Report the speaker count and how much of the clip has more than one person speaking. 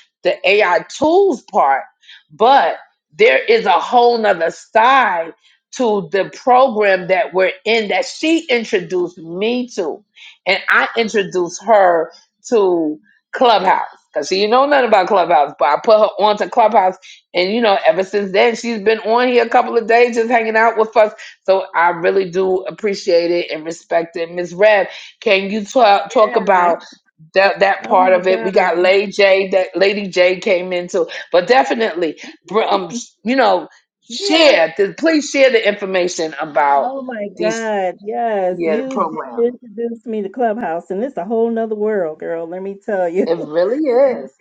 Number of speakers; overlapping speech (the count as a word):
two, about 7%